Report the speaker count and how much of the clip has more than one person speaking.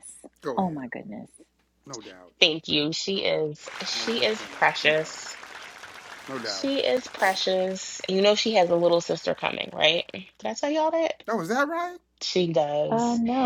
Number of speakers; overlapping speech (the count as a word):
three, about 10%